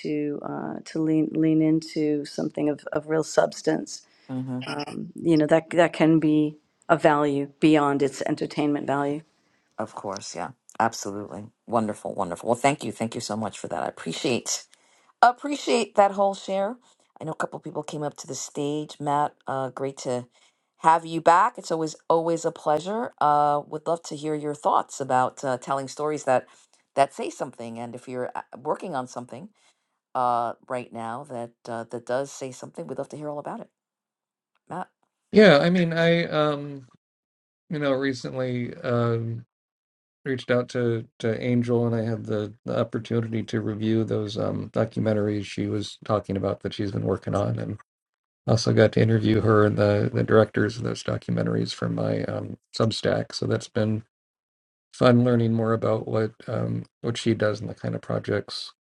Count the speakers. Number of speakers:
3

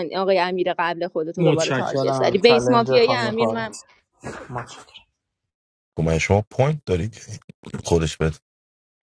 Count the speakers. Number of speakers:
3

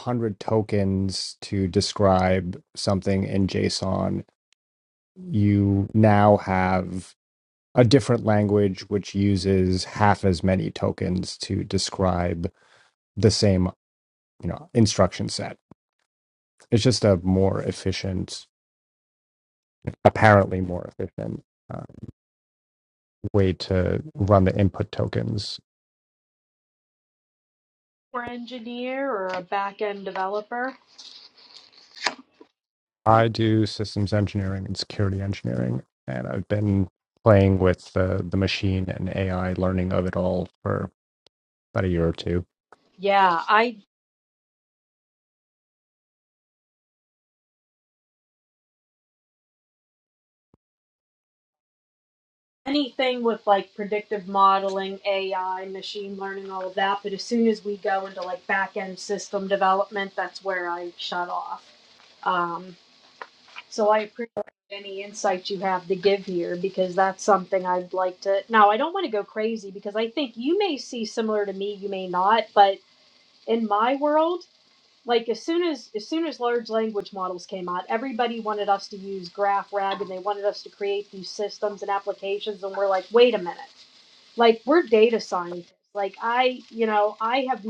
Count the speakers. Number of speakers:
2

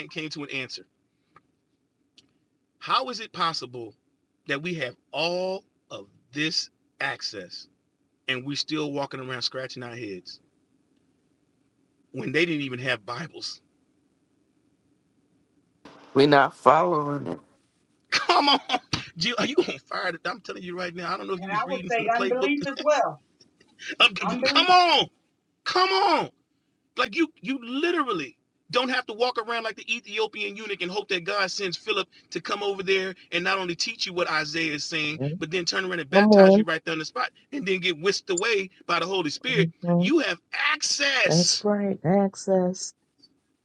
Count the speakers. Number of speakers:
4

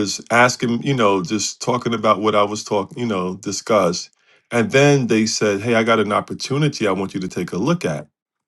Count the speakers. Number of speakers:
1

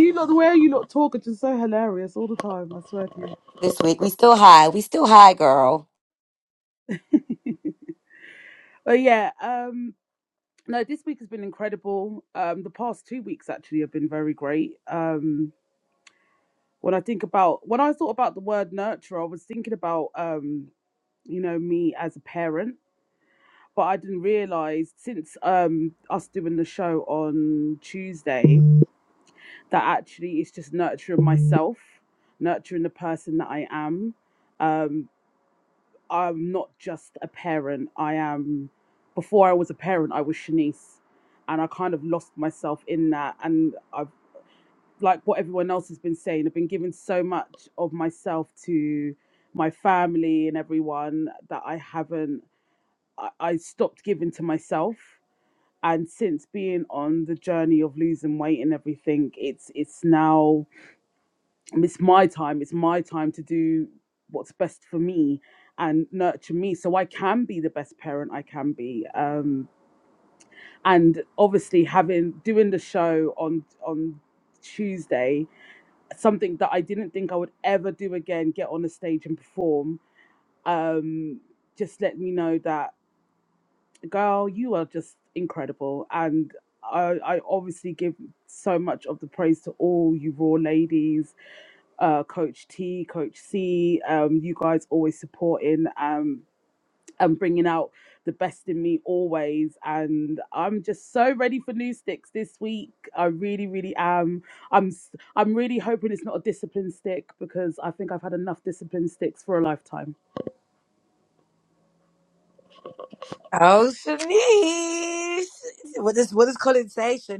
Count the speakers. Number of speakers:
3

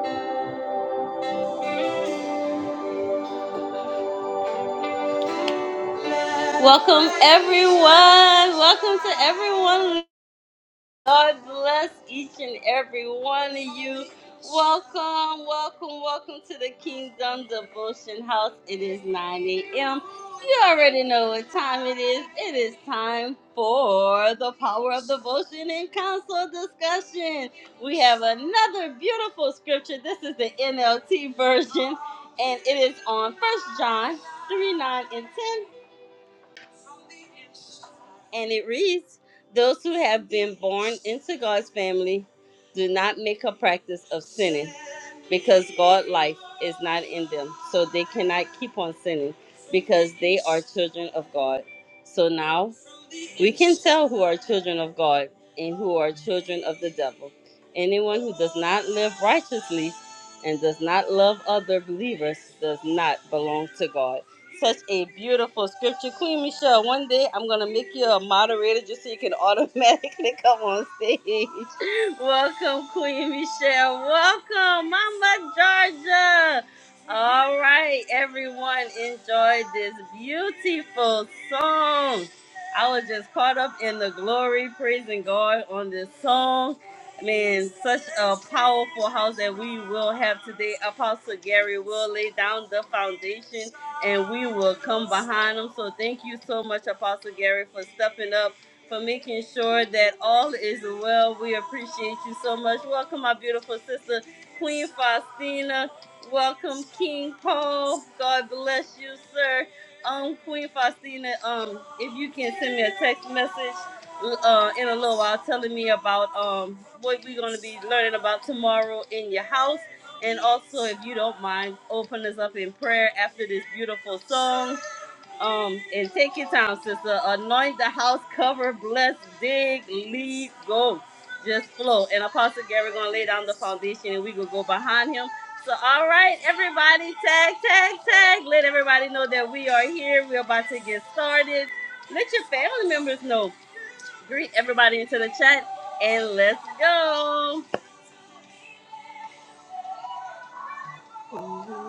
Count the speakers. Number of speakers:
1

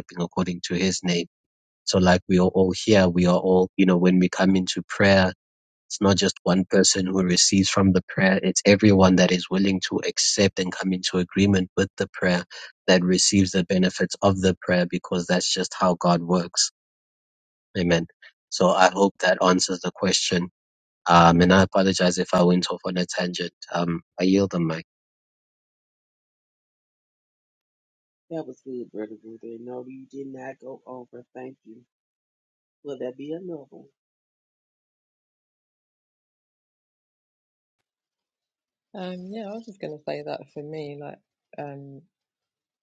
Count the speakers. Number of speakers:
3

